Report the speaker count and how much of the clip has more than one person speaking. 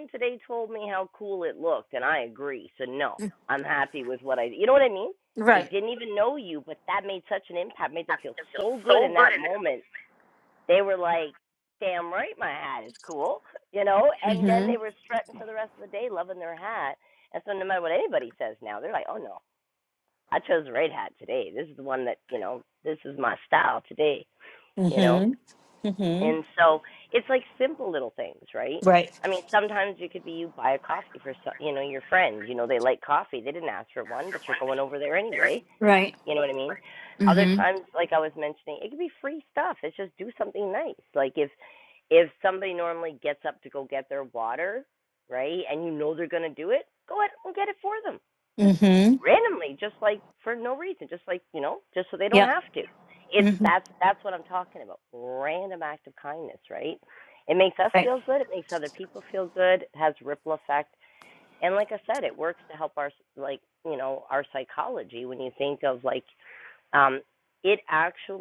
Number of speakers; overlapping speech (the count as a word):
two, about 4%